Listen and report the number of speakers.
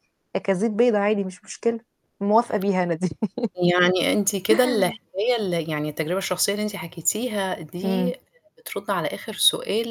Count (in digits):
2